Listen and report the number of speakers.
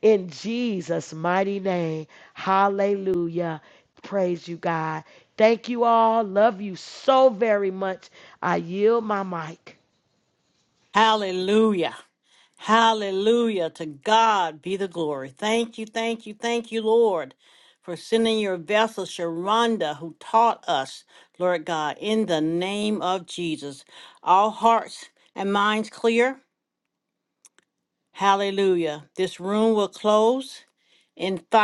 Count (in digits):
2